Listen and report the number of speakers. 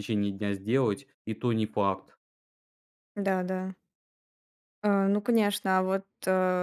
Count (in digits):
2